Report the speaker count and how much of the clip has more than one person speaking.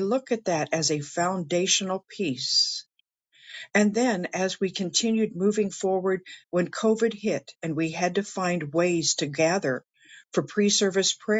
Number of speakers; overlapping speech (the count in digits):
1, no overlap